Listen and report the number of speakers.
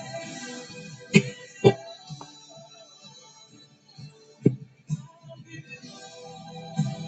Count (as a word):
zero